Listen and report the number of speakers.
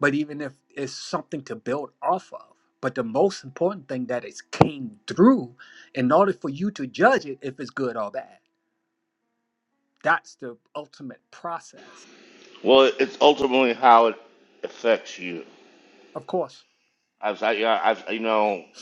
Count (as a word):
two